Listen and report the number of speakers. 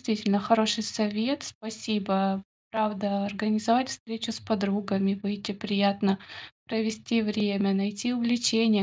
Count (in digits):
1